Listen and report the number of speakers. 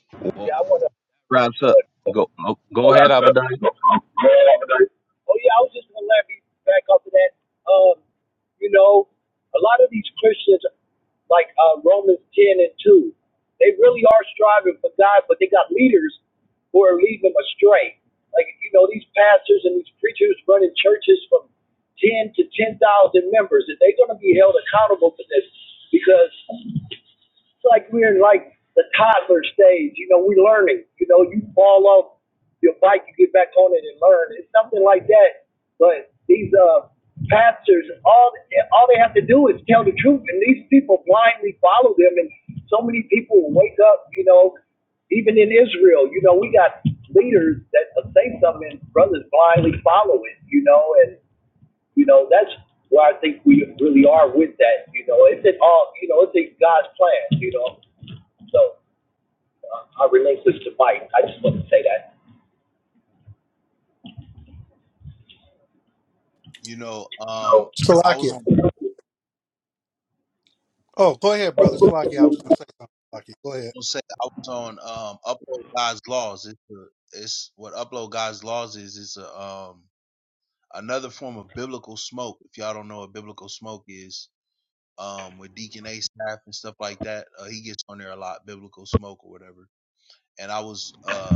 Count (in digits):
4